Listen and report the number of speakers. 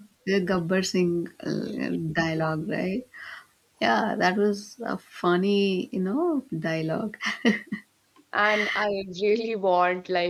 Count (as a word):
two